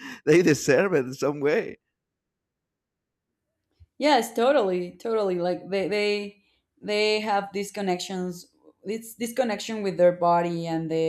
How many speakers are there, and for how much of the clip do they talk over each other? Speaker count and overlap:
two, no overlap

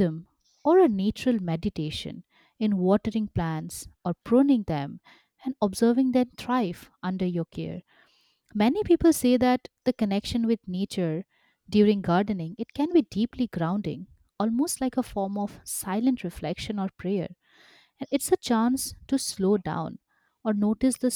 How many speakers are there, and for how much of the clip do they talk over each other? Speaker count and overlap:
one, no overlap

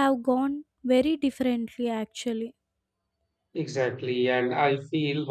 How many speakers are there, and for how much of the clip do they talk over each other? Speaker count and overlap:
two, no overlap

